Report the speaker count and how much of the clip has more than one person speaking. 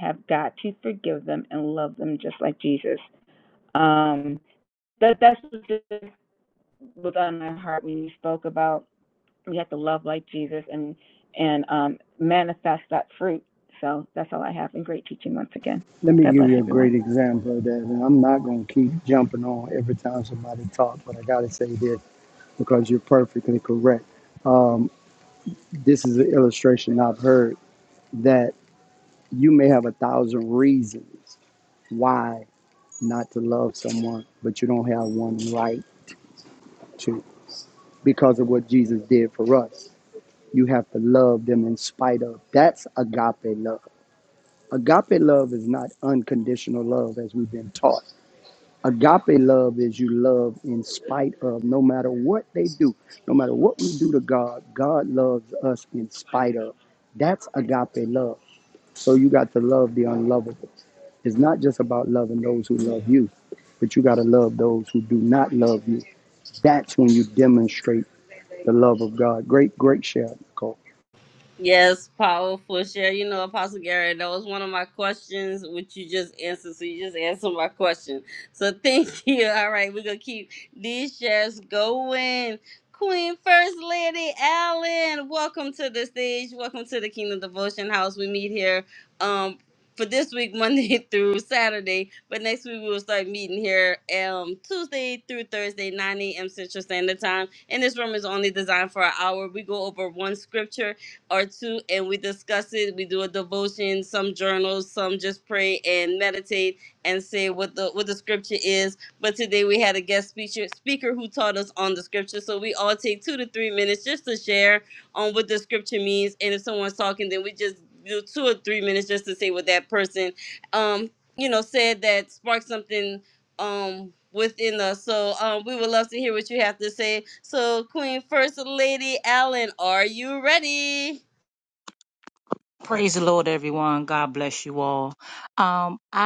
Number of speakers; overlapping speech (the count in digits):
4, about 1%